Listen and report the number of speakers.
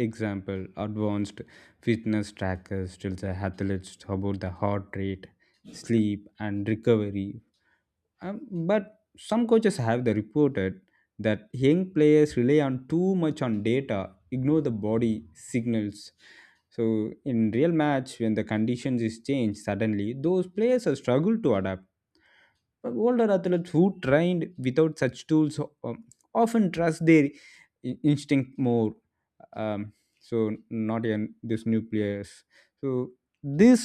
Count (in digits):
1